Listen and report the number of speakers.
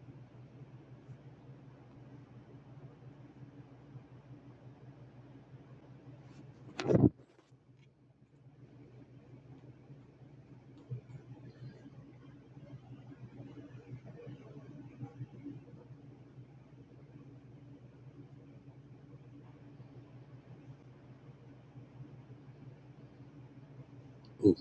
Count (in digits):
0